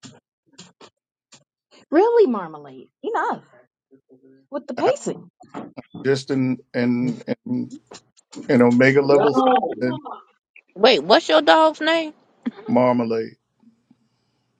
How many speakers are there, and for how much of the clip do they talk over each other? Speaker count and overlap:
three, about 3%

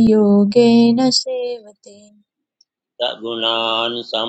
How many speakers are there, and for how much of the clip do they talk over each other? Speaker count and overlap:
two, no overlap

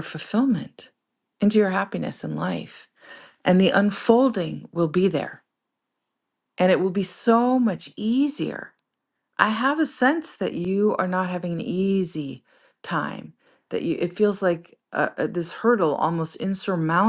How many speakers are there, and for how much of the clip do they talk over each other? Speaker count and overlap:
one, no overlap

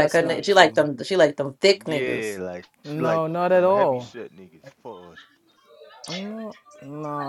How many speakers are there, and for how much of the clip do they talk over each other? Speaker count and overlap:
three, about 26%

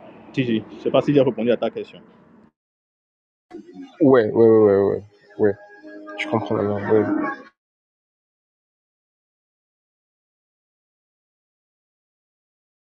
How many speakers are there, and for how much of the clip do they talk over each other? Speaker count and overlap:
two, no overlap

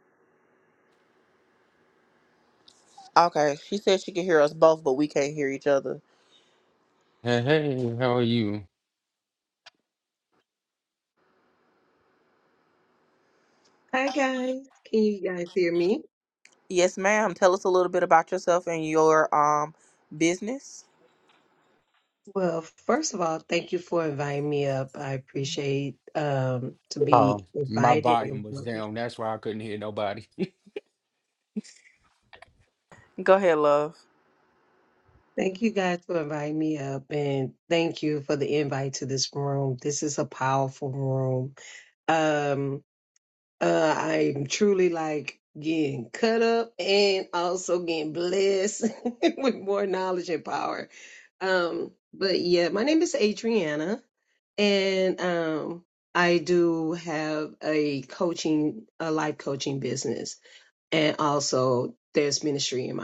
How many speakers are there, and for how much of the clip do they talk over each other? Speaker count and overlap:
three, about 3%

